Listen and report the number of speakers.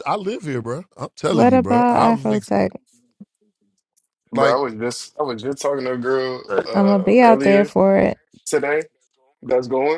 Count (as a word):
three